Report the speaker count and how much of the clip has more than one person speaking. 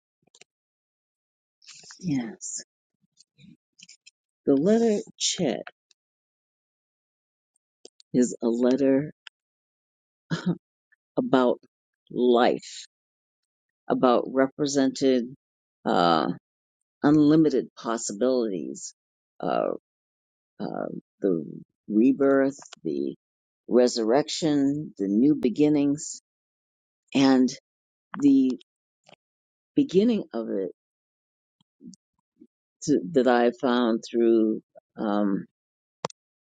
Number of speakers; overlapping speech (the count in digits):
1, no overlap